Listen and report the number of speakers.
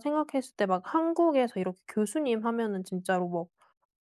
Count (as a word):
one